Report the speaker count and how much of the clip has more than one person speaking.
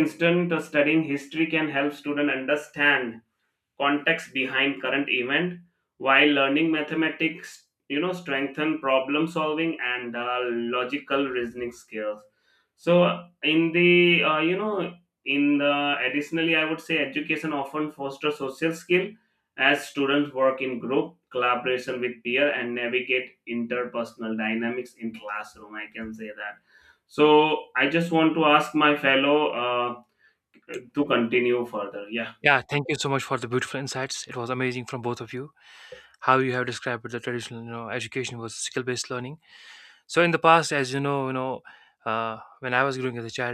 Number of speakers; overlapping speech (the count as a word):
two, no overlap